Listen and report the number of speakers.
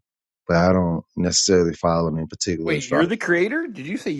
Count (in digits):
2